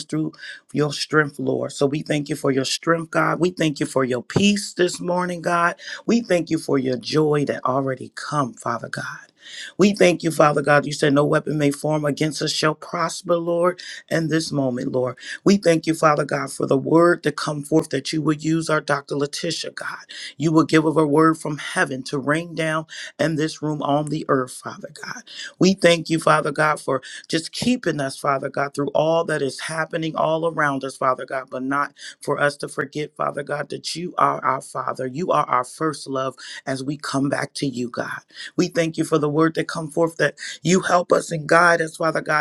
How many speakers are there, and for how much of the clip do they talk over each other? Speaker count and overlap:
one, no overlap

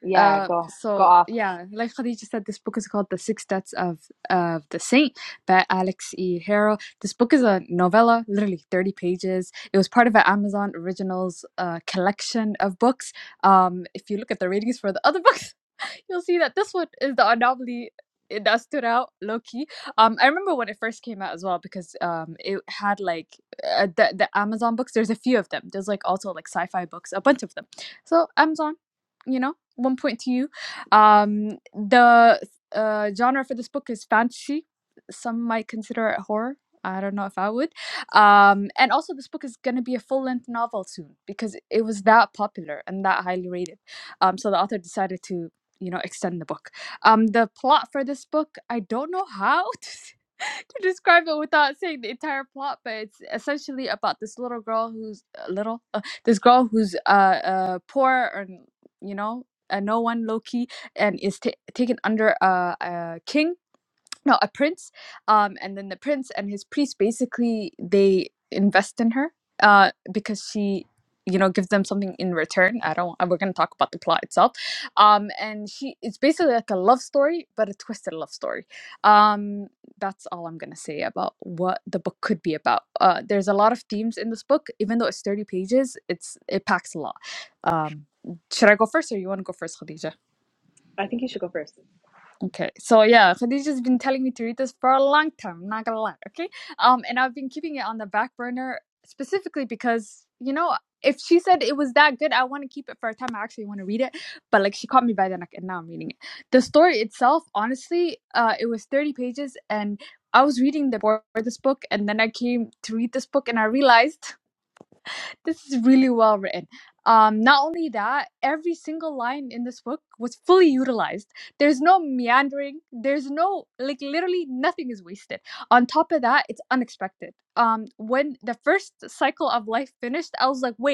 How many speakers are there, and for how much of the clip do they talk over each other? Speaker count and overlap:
two, about 1%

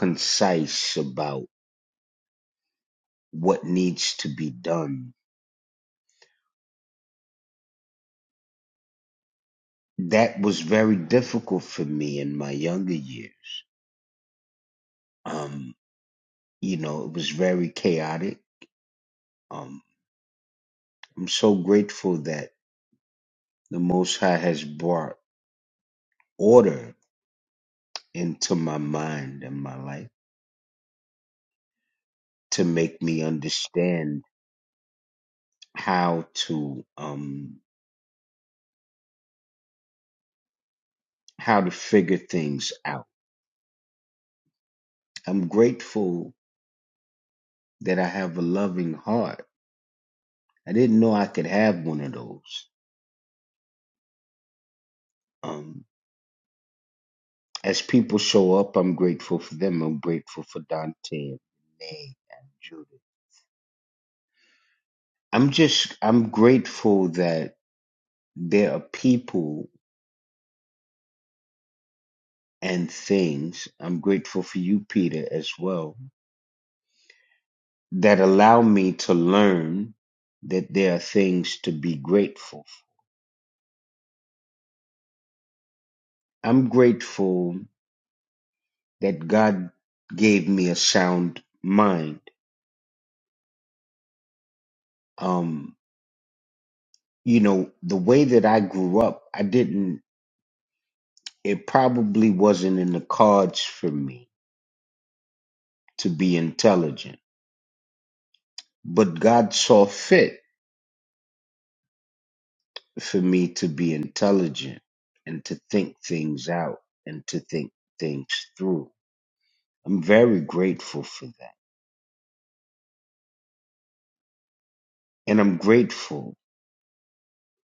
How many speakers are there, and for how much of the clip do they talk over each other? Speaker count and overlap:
one, no overlap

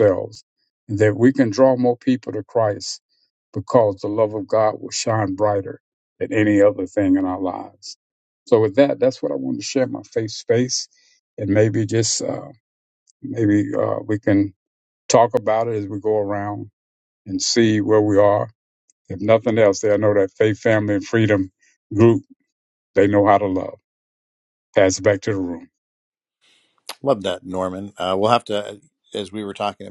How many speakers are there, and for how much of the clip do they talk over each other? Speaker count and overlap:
two, no overlap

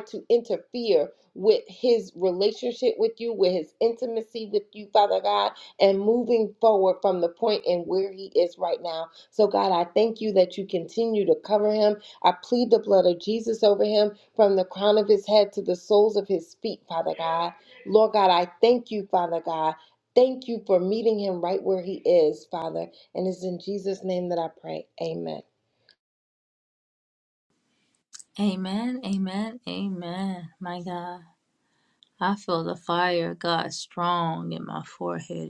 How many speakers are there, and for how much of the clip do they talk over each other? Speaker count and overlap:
two, no overlap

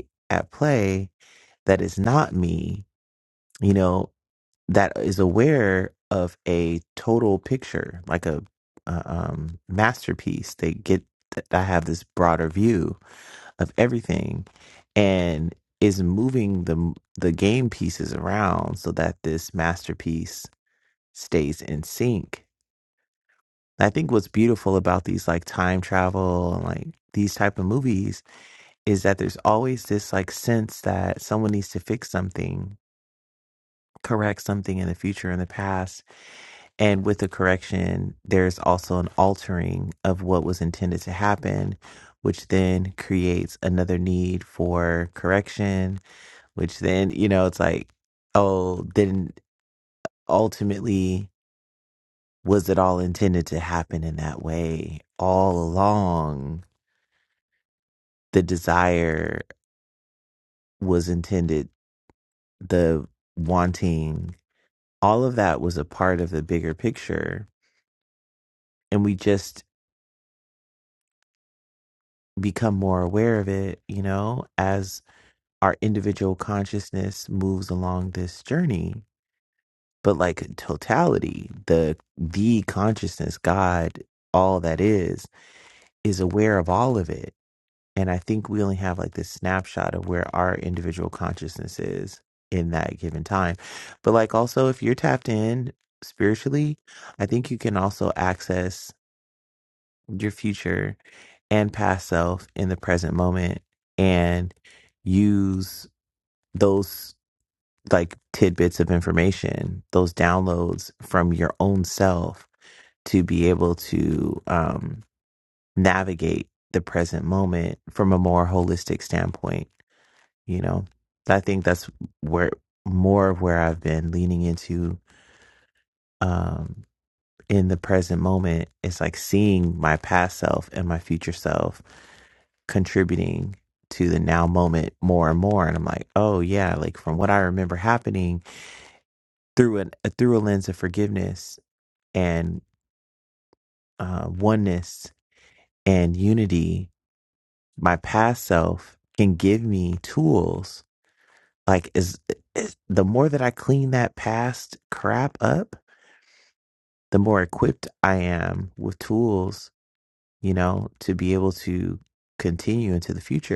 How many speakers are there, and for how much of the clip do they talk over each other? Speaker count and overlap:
one, no overlap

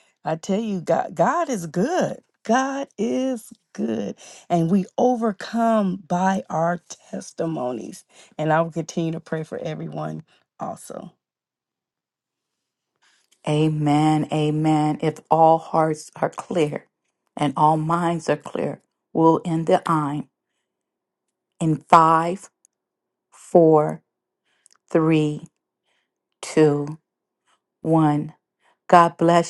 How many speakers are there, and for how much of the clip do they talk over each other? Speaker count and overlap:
two, no overlap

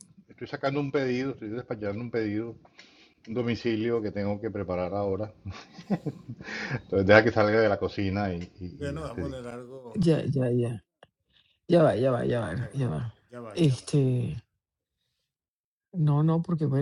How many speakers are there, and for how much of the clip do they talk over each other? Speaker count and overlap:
two, no overlap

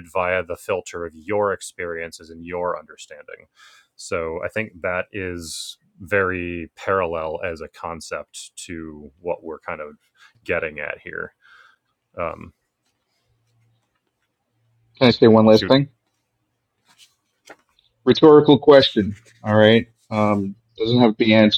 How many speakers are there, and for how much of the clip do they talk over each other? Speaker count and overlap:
two, about 1%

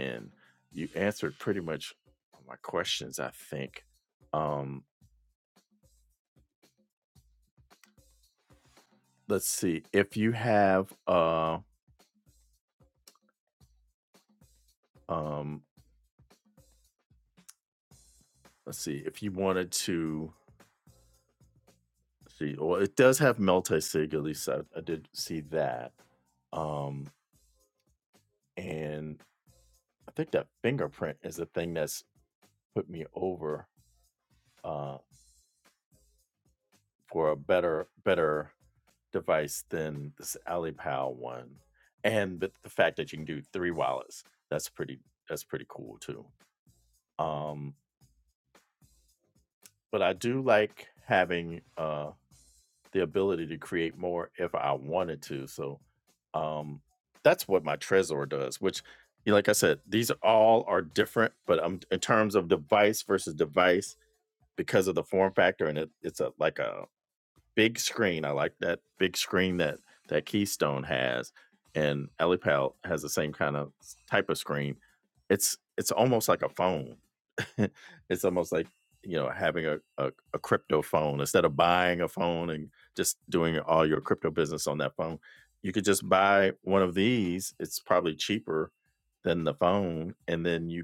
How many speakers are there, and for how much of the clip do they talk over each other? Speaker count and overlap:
one, no overlap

